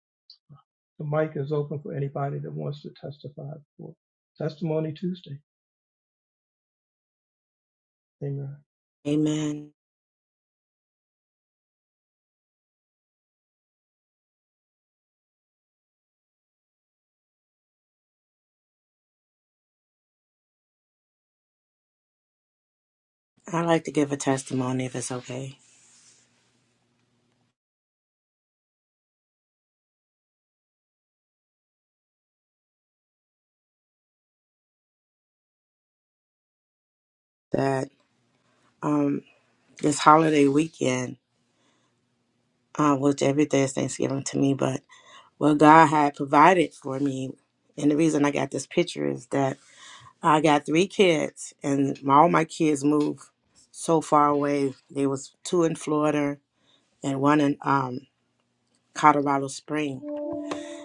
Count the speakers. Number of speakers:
2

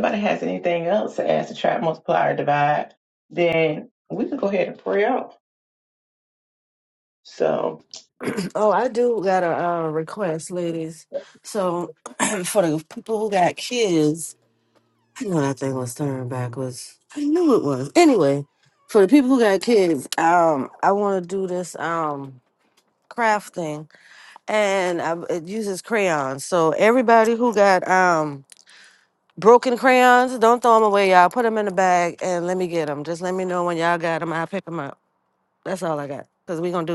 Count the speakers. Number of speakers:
2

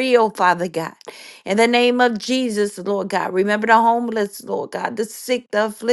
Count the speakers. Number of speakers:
1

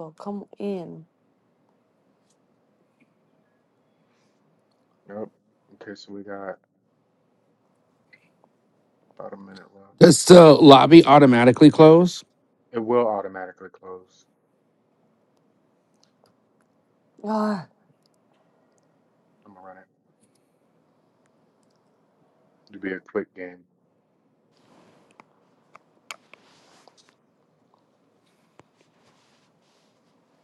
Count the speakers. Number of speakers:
3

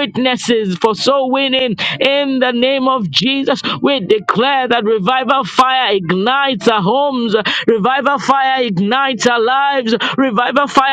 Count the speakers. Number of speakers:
1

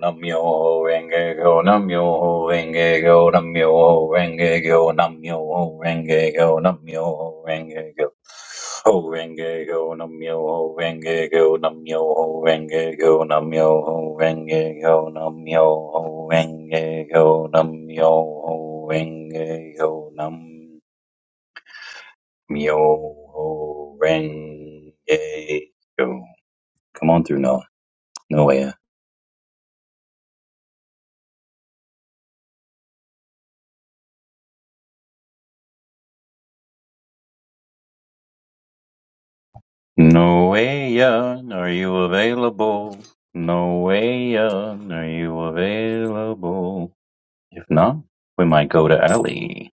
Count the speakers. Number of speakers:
1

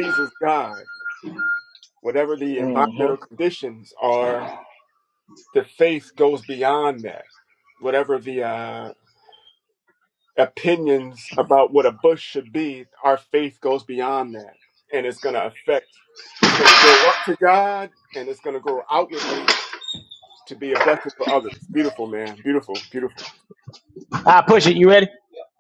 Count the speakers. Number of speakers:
2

